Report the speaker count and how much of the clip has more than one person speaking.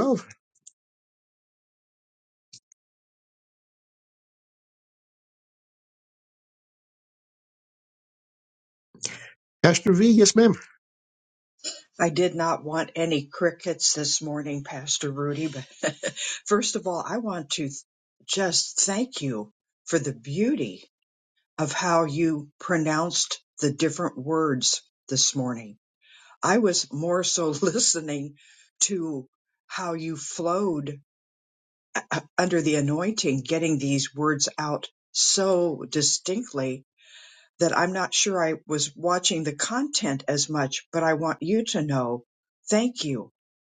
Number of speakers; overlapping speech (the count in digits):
2, no overlap